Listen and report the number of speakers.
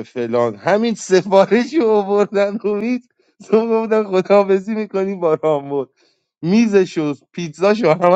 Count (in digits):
1